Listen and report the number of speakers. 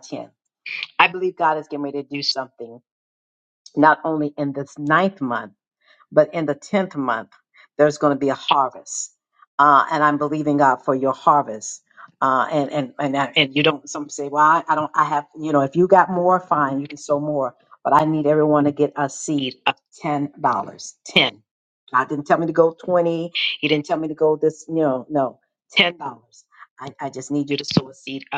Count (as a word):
one